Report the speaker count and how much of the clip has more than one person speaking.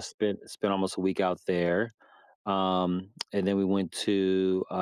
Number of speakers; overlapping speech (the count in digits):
1, no overlap